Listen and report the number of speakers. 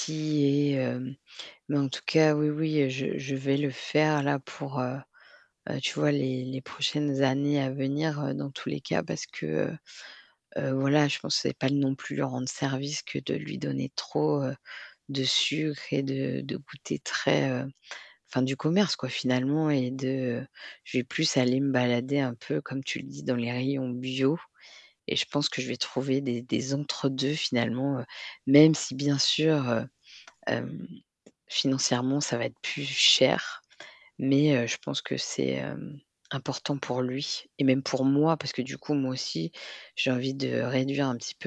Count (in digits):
1